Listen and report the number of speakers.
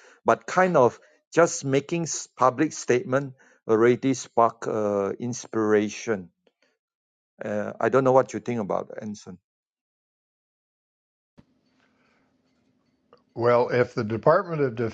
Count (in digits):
2